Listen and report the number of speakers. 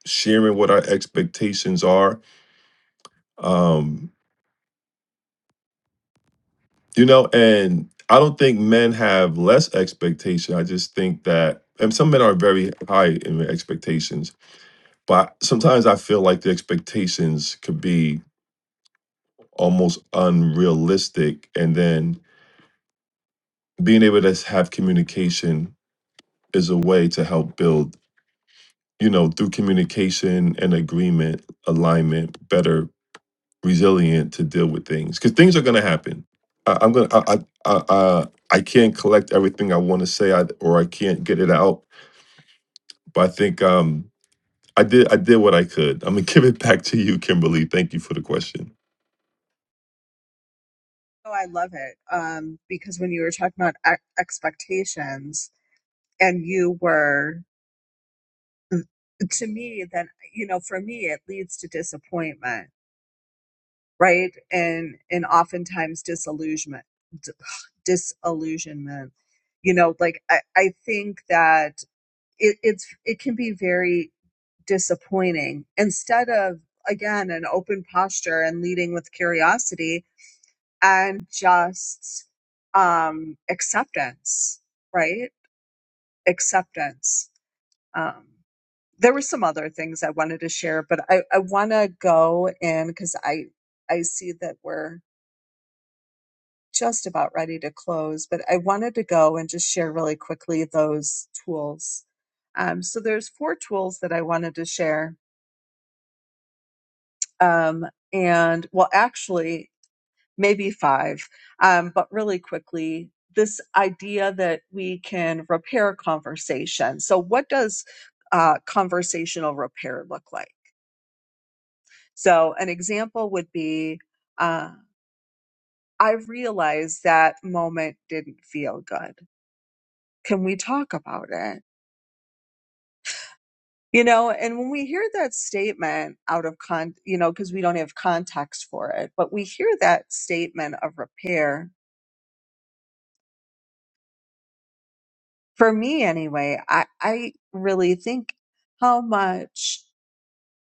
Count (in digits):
2